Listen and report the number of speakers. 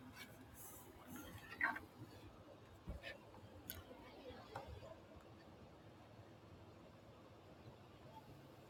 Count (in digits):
0